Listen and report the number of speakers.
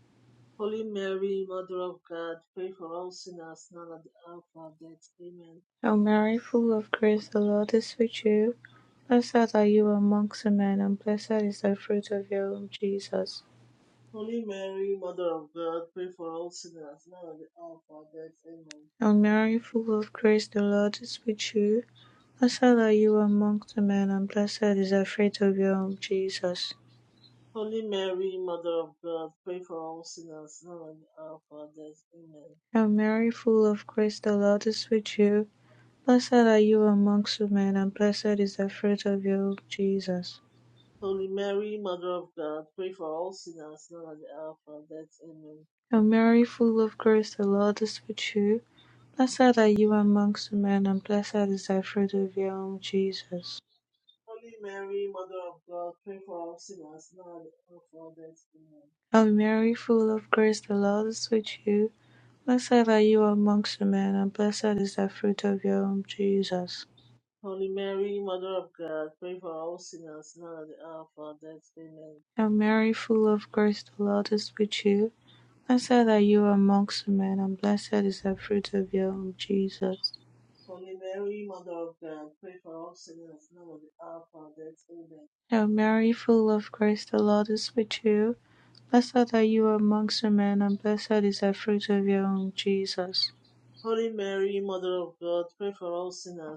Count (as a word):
two